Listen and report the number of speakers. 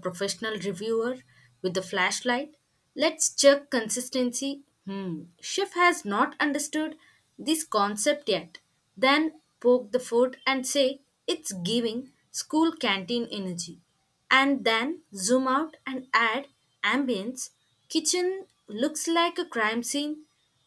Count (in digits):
1